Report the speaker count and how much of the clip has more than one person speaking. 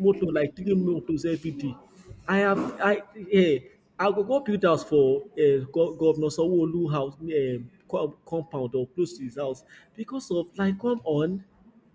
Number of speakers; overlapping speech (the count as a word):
one, no overlap